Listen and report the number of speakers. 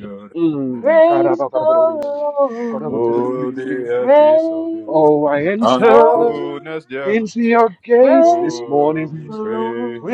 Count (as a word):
three